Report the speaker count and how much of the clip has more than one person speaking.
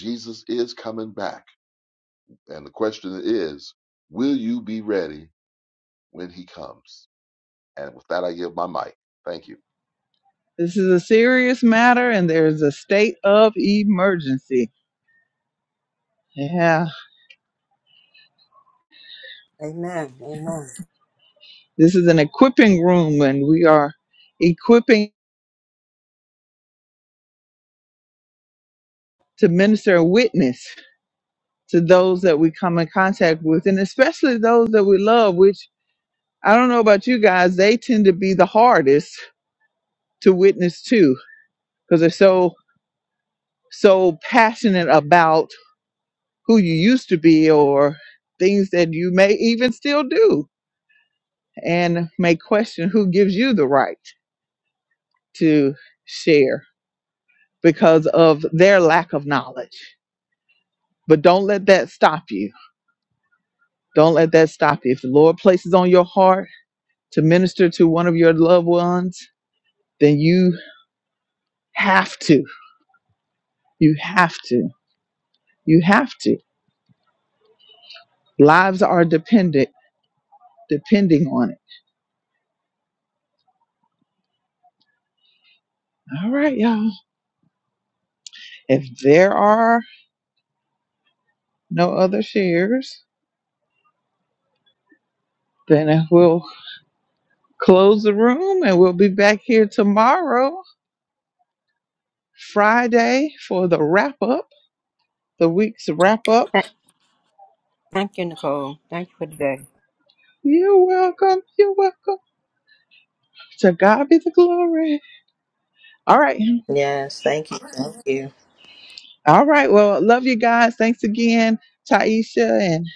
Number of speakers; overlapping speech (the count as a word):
four, no overlap